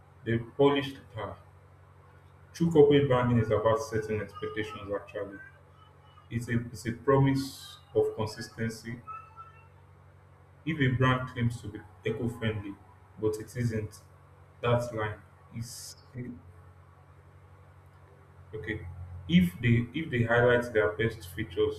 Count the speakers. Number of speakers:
one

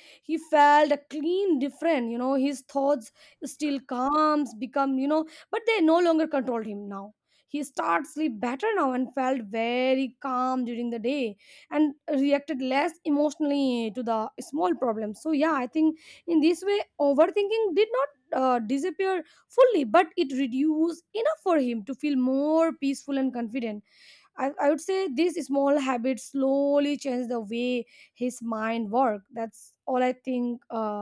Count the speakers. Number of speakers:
one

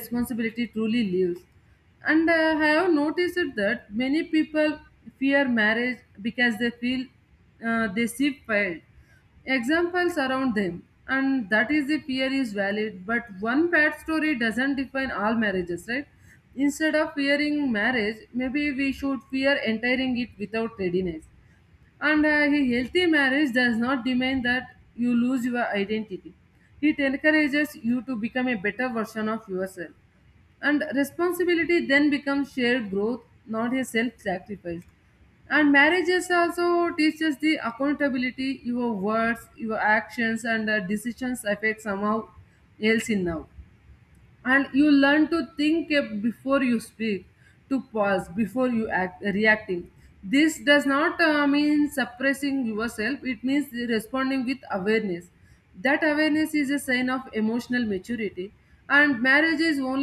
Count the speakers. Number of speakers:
one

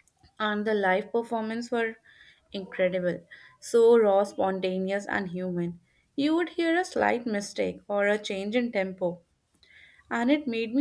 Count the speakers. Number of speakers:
one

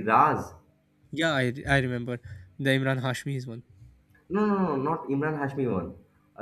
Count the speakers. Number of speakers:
two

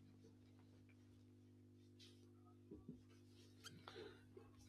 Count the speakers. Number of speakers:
zero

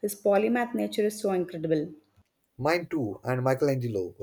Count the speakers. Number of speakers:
two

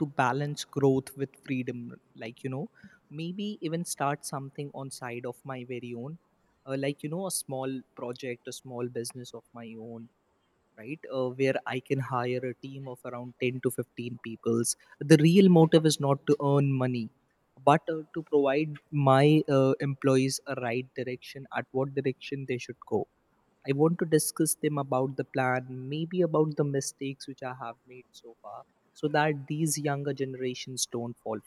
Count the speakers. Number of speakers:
one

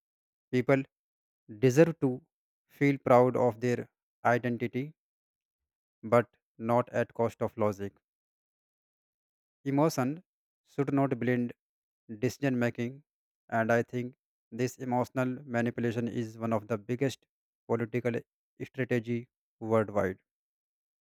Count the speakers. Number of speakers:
one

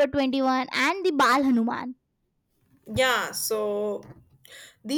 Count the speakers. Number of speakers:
two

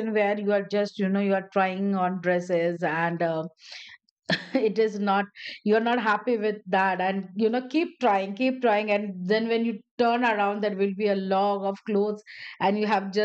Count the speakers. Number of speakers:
one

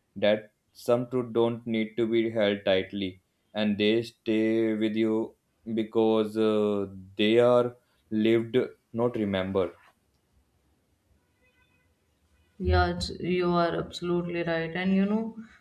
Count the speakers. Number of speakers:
two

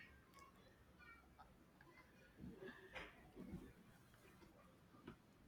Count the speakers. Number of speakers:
zero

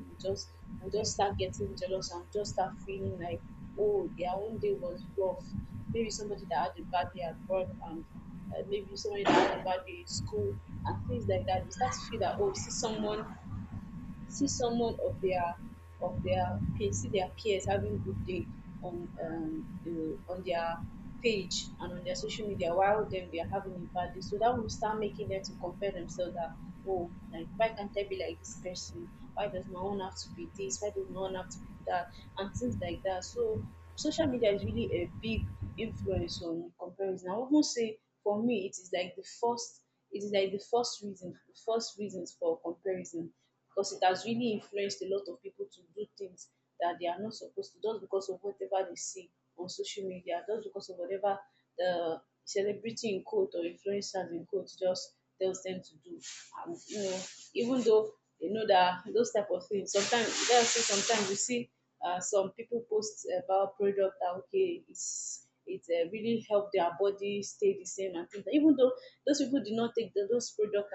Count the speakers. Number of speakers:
one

